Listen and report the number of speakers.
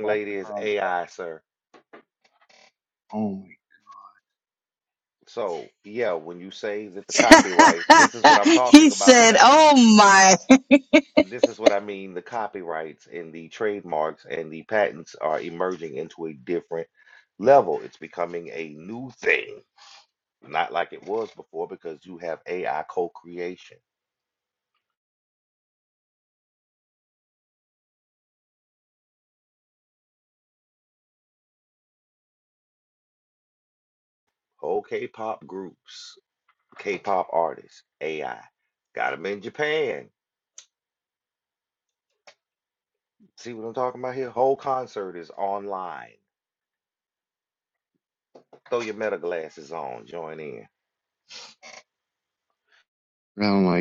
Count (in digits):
3